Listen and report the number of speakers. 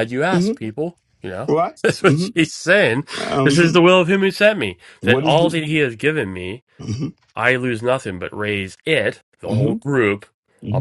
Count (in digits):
2